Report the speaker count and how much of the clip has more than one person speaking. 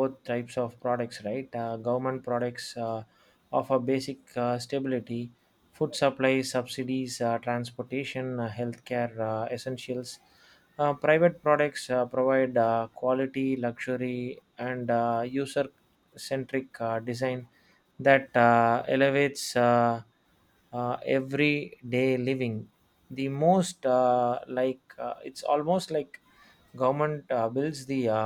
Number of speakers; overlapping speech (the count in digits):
1, no overlap